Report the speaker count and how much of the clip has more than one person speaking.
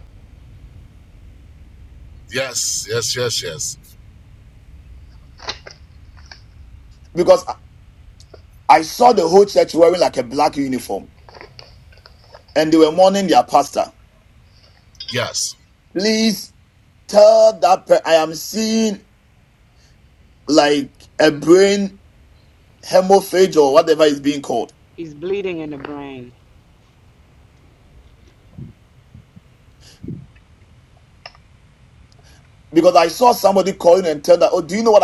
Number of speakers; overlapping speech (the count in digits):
3, no overlap